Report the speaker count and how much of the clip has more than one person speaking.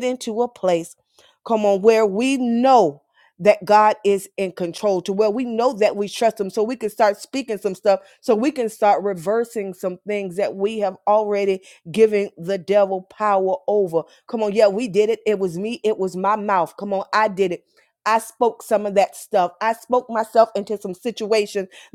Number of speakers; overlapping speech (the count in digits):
1, no overlap